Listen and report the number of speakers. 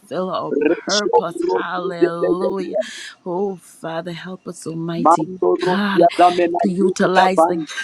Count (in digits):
2